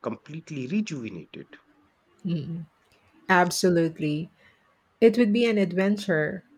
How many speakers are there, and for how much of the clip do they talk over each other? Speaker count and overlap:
two, no overlap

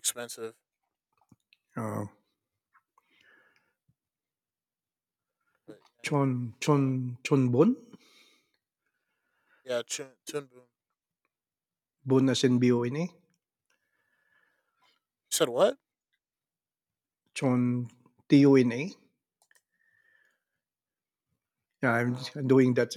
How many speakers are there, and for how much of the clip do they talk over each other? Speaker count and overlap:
two, about 2%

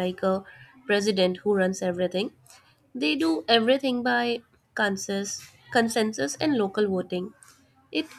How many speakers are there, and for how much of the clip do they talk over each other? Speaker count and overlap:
one, no overlap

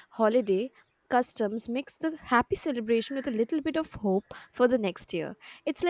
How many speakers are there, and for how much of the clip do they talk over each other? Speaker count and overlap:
one, no overlap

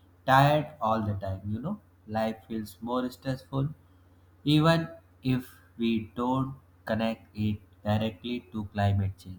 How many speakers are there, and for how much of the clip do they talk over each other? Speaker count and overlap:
one, no overlap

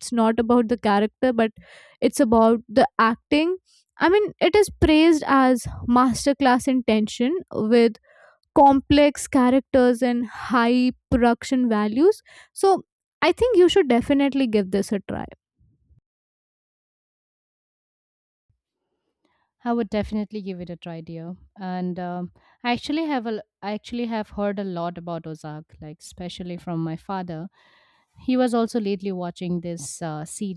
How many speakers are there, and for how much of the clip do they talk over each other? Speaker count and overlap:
two, no overlap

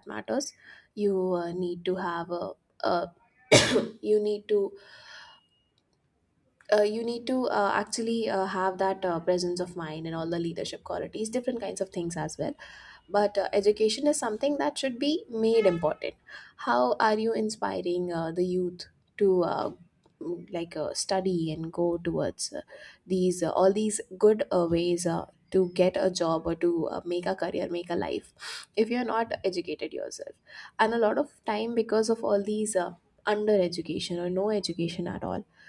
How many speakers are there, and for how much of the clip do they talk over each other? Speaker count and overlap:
one, no overlap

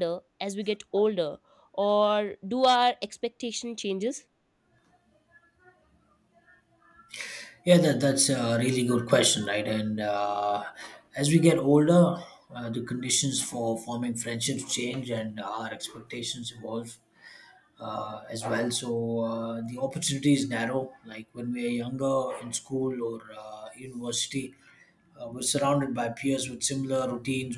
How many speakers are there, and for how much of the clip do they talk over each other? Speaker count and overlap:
two, no overlap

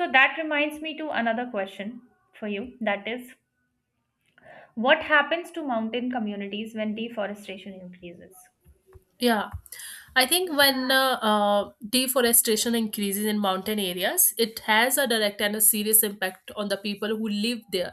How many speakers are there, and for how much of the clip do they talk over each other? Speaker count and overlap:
two, no overlap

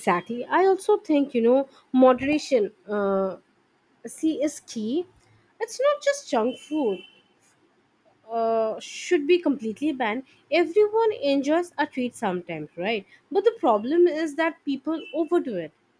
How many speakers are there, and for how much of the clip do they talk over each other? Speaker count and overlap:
one, no overlap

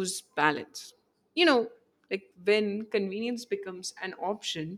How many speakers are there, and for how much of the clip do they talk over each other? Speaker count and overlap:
one, no overlap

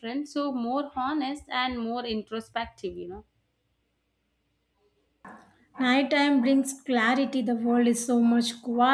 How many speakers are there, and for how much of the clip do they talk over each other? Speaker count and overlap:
two, no overlap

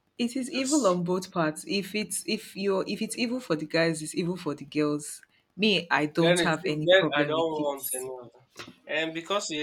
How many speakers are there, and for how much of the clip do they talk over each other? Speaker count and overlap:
two, about 19%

